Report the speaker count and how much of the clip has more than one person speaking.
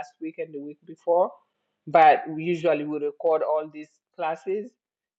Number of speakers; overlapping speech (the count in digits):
1, no overlap